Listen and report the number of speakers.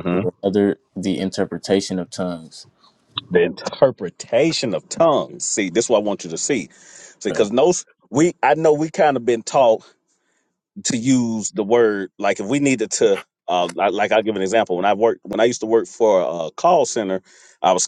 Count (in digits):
2